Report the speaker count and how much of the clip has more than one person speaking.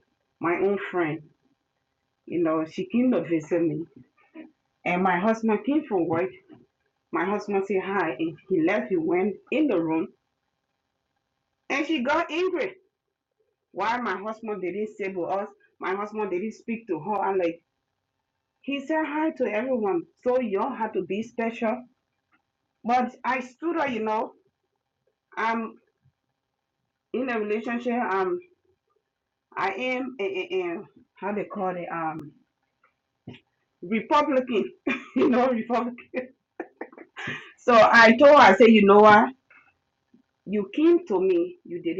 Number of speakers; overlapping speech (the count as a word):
one, no overlap